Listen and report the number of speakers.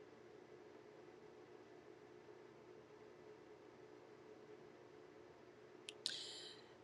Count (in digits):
0